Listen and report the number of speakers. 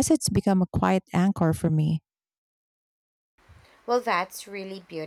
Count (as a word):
two